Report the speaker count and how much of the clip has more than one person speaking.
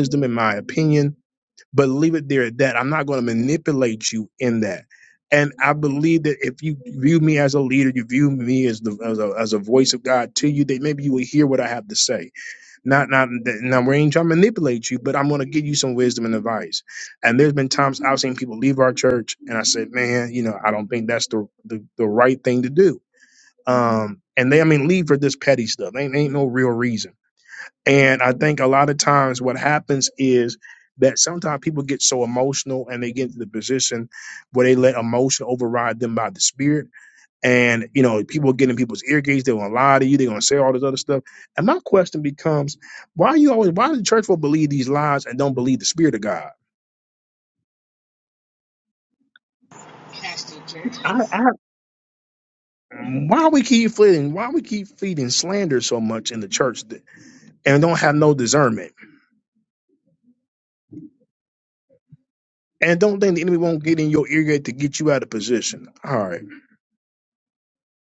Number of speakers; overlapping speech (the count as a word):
two, no overlap